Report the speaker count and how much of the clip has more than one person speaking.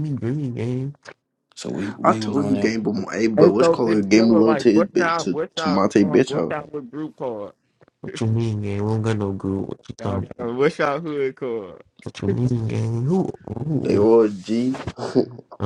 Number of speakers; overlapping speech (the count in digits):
4, about 27%